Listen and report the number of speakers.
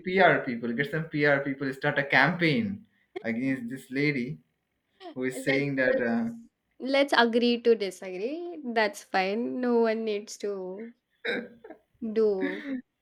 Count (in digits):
2